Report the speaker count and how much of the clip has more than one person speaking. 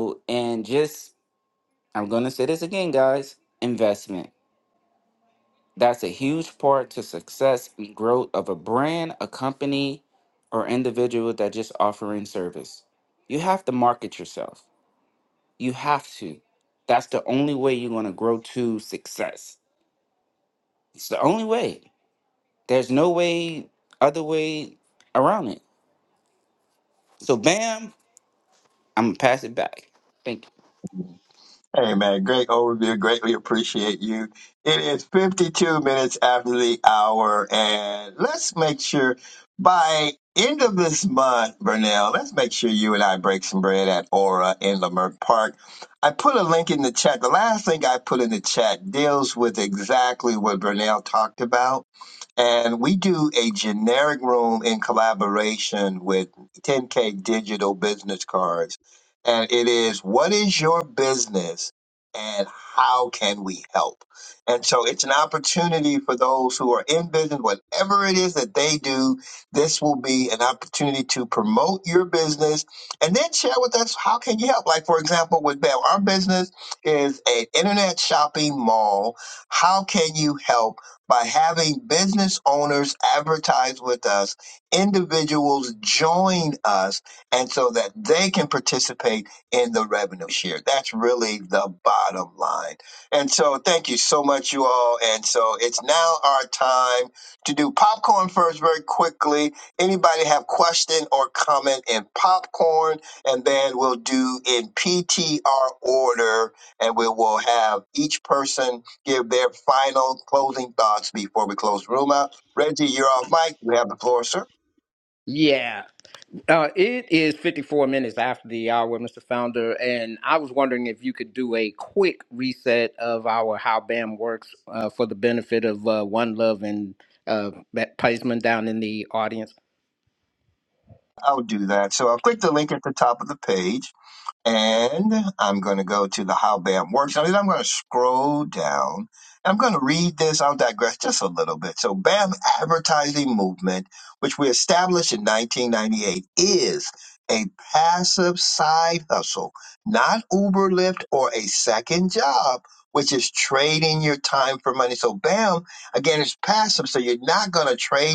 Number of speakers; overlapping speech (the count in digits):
3, no overlap